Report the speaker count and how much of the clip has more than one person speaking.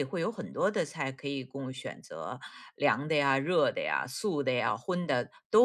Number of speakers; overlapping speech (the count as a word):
one, no overlap